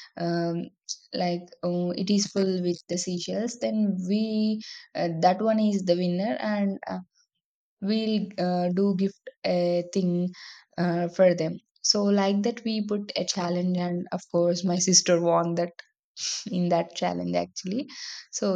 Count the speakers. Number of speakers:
1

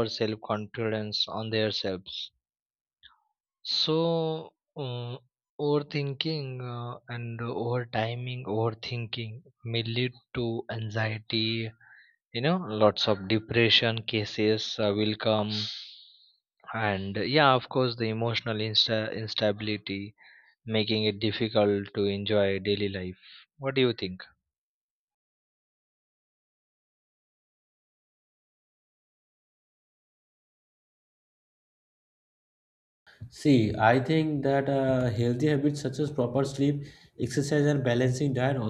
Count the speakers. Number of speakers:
2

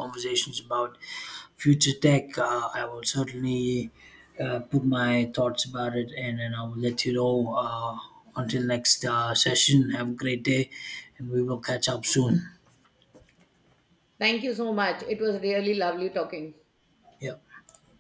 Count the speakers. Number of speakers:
2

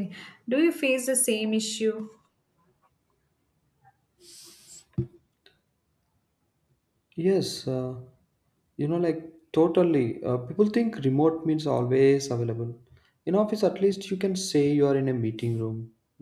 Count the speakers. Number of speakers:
2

